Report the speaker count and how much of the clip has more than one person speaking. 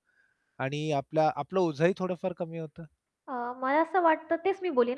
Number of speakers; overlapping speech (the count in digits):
2, no overlap